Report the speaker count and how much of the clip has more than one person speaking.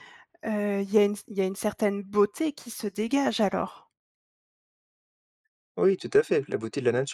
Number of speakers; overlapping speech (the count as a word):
two, no overlap